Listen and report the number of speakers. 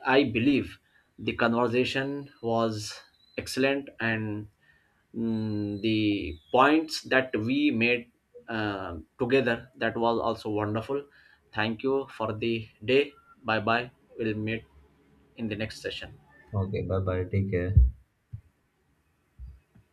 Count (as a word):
two